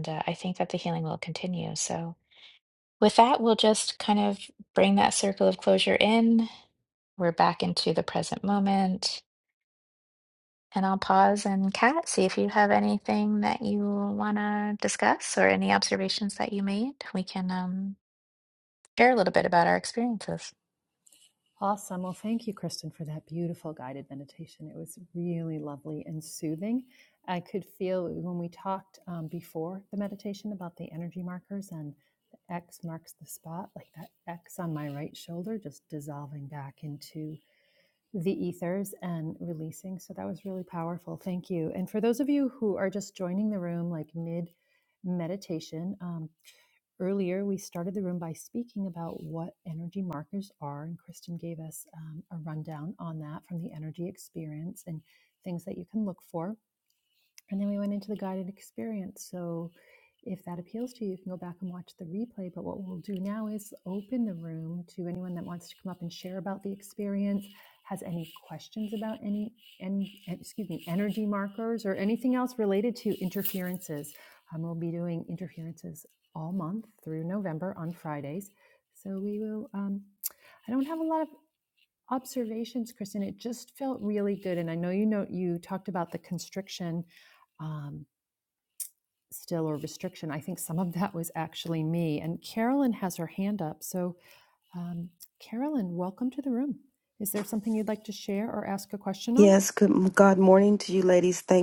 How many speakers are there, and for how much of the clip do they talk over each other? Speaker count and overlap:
three, under 1%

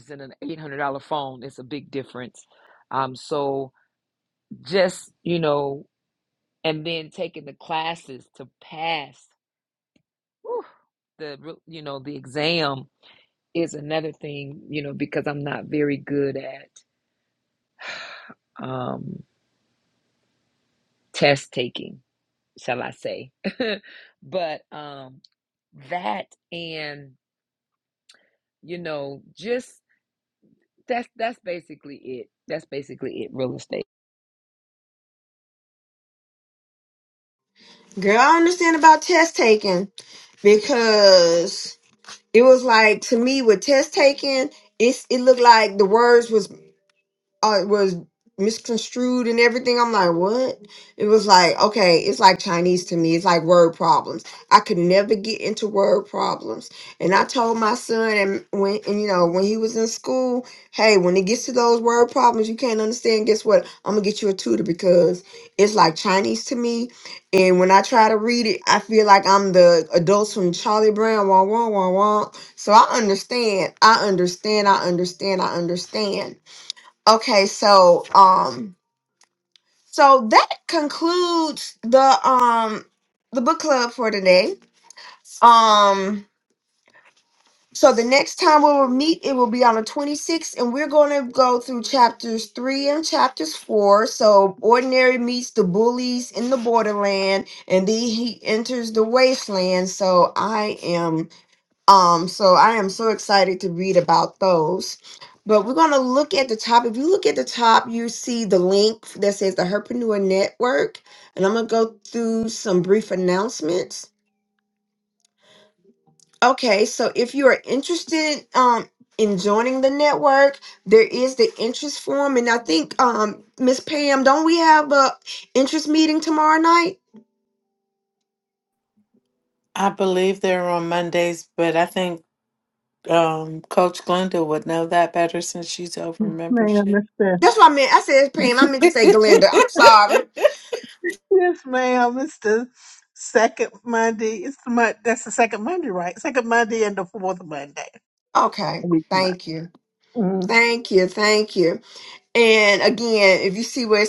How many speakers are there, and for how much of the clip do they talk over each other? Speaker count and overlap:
four, about 1%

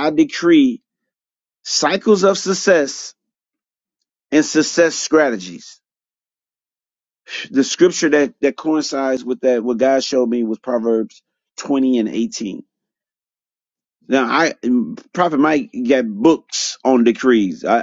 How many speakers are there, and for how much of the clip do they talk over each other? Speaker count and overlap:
one, no overlap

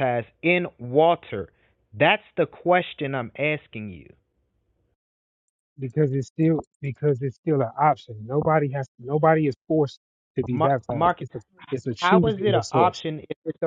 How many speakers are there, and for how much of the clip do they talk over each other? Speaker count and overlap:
two, about 12%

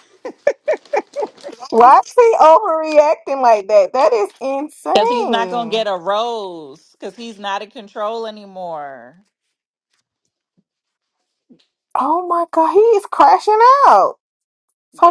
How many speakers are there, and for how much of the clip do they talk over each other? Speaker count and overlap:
two, about 4%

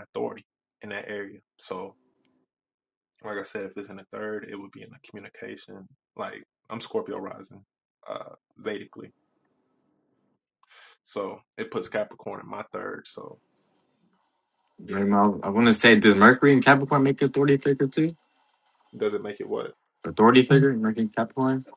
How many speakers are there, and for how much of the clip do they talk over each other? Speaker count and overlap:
two, about 1%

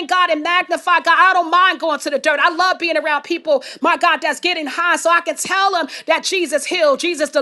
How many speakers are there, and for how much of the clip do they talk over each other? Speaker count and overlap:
one, no overlap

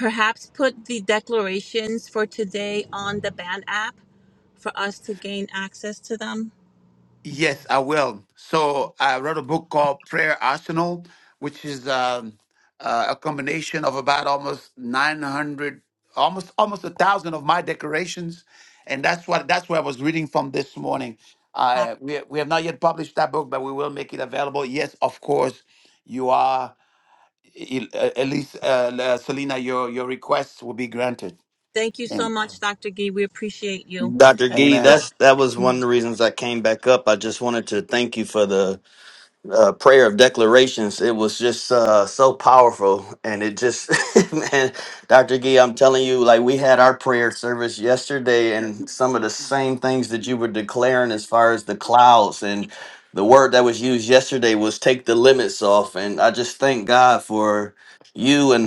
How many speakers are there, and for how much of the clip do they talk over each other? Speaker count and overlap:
three, about 2%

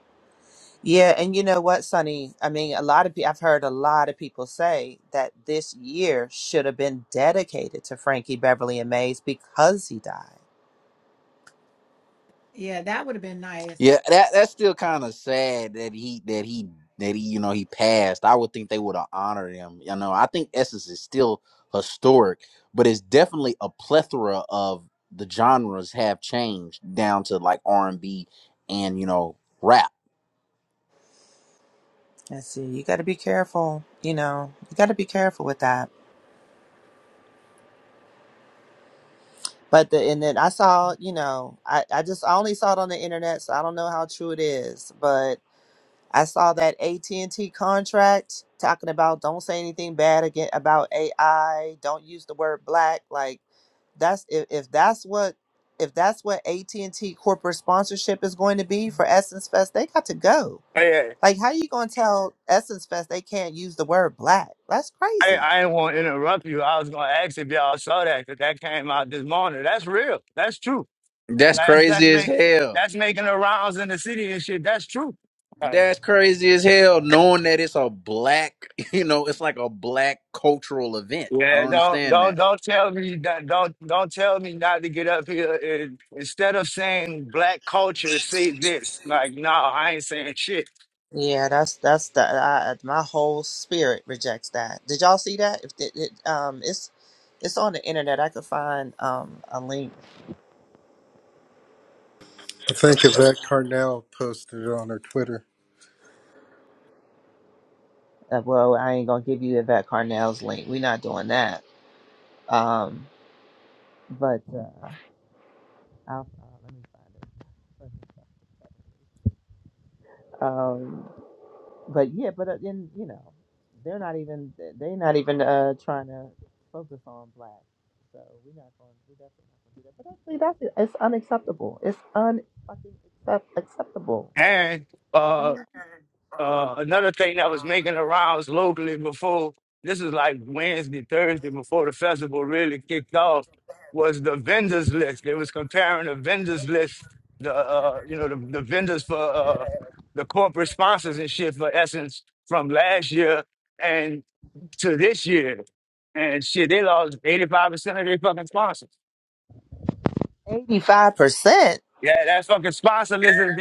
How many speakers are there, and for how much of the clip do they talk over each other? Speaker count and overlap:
five, about 2%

